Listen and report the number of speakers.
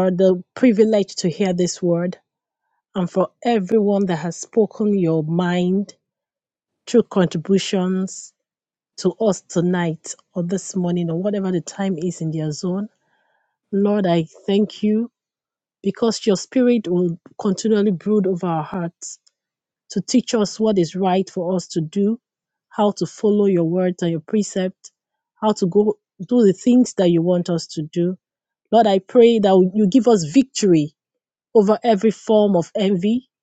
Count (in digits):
1